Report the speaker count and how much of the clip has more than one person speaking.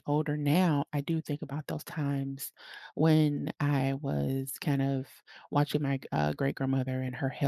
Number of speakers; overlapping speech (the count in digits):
1, no overlap